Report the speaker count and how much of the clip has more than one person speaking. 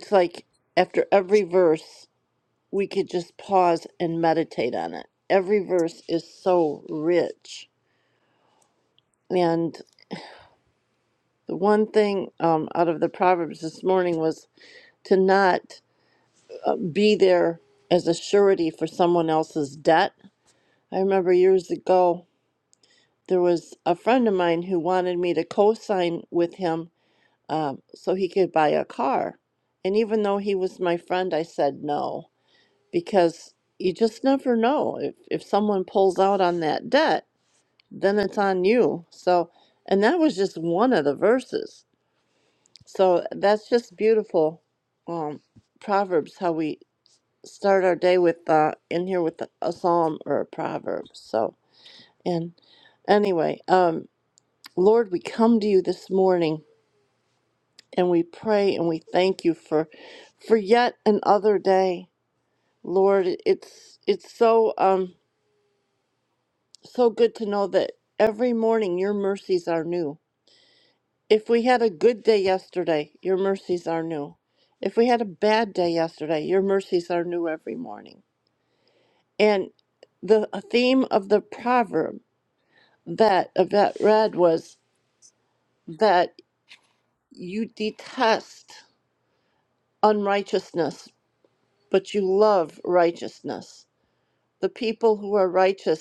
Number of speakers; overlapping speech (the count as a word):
one, no overlap